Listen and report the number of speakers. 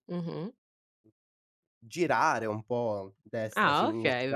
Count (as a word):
two